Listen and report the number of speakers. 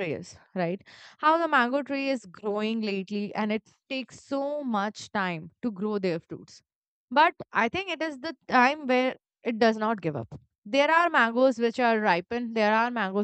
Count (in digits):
1